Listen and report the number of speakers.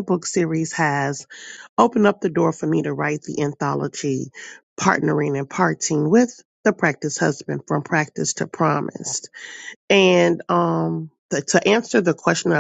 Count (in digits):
1